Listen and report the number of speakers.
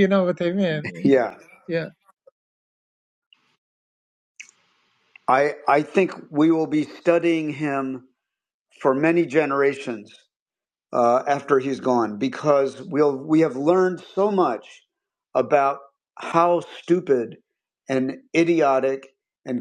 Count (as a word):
two